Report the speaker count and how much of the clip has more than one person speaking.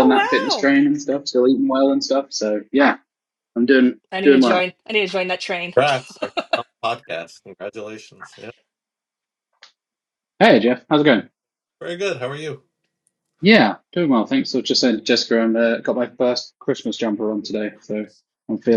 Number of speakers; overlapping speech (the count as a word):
three, about 7%